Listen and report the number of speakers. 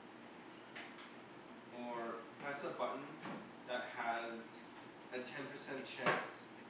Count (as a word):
one